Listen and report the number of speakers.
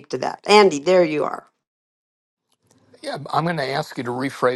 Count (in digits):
2